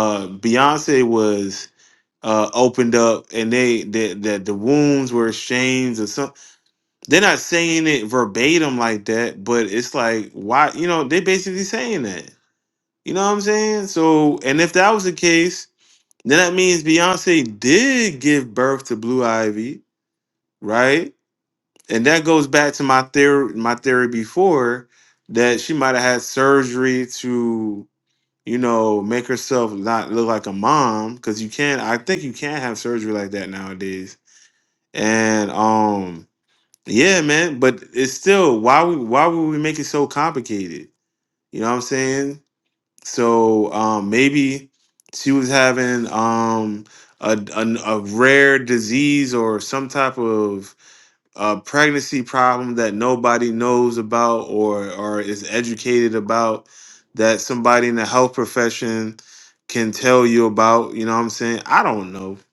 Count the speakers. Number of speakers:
one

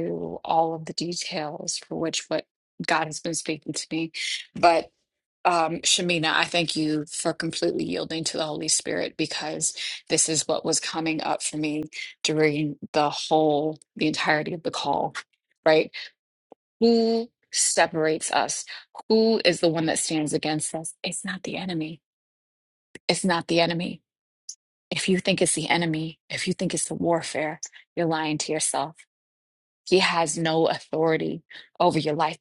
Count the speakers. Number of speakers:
one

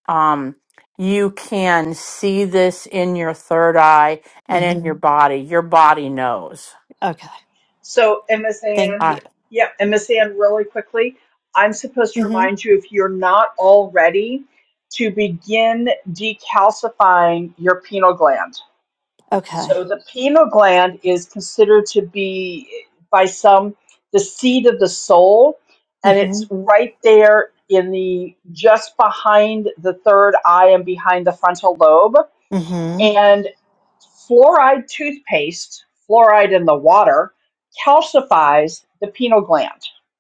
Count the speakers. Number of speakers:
three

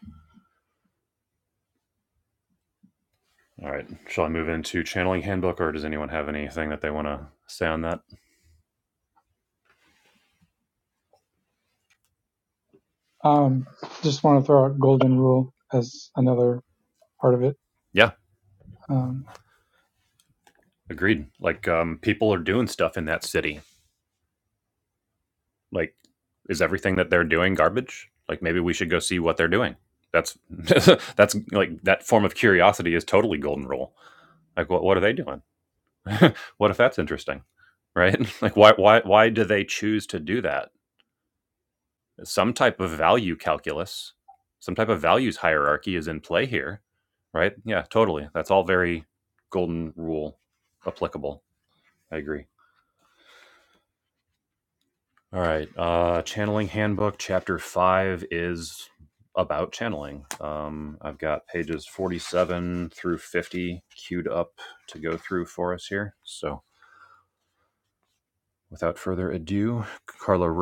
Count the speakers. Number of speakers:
two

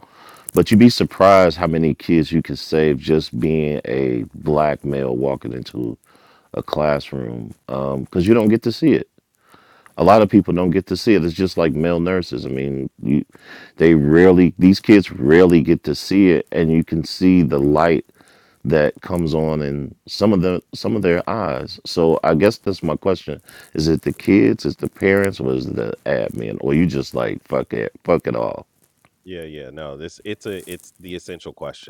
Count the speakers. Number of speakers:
two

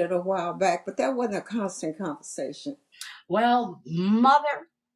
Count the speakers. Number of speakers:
two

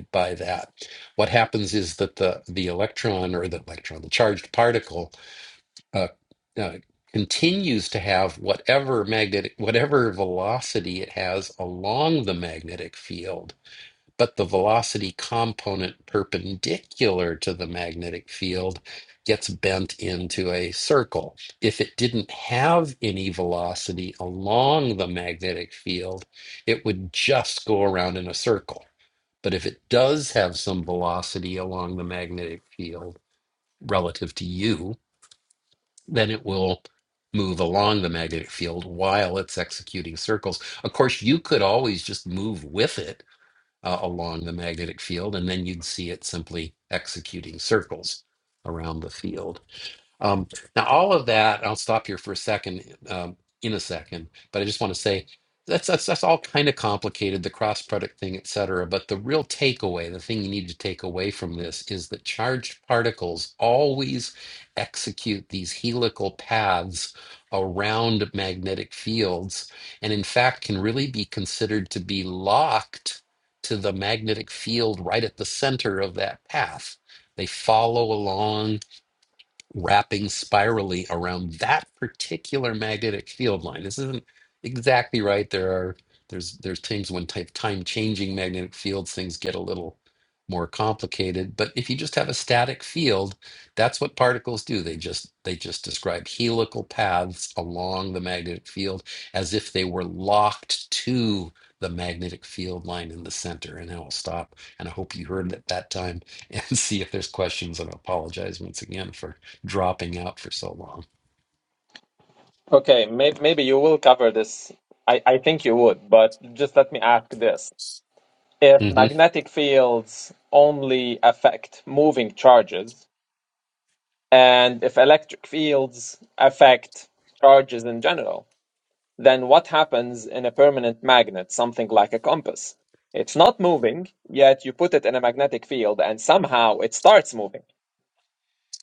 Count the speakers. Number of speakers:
two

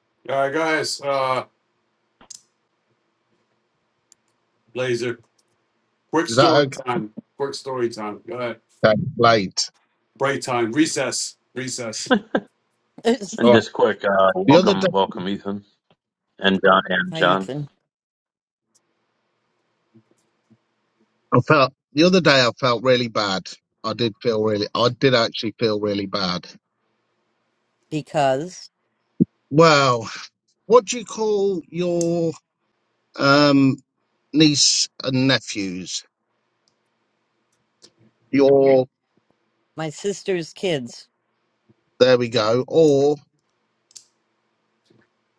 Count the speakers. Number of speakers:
four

